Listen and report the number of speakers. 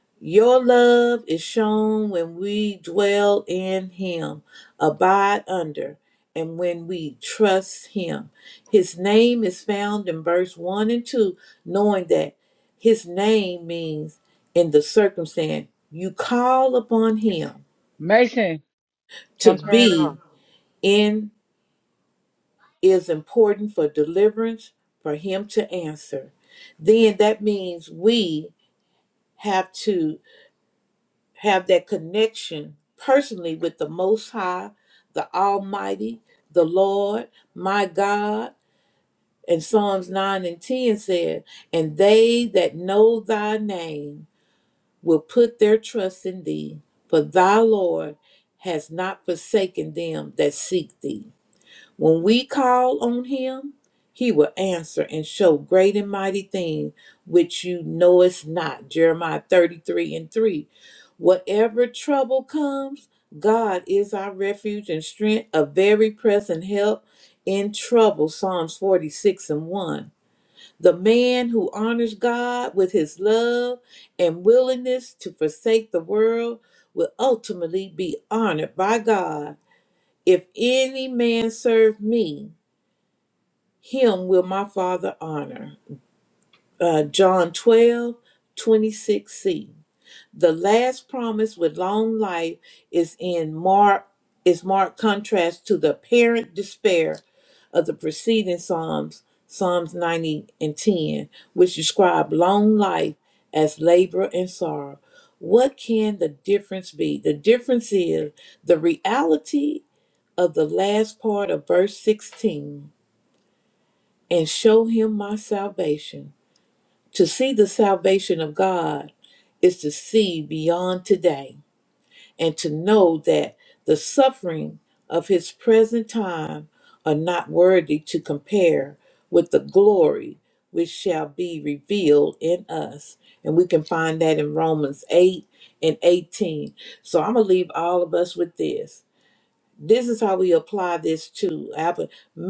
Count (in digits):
2